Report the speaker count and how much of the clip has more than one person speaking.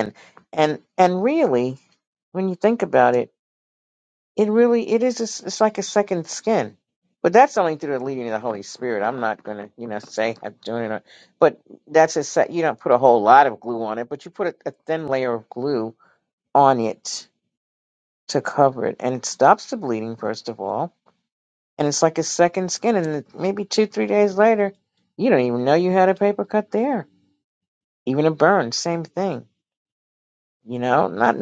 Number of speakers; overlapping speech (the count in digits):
1, no overlap